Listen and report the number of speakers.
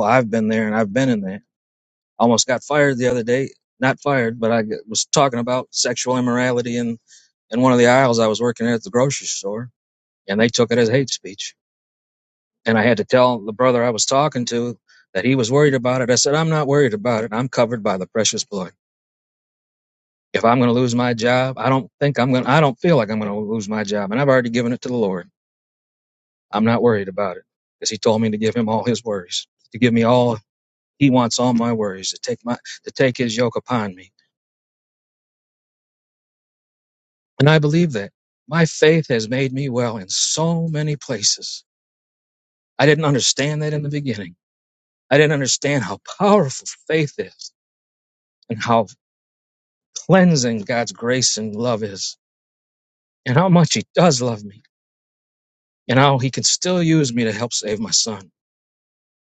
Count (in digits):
1